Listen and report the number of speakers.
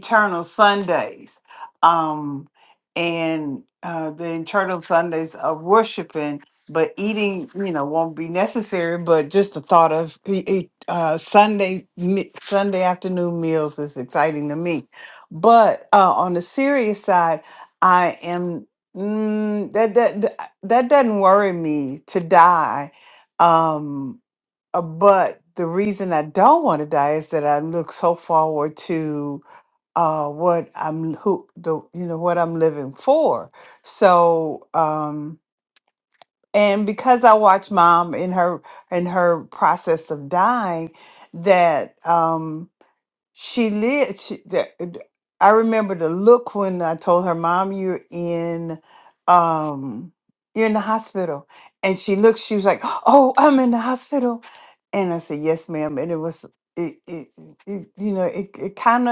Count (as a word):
one